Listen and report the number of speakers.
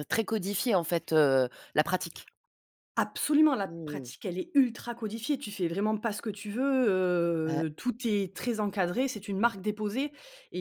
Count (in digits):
2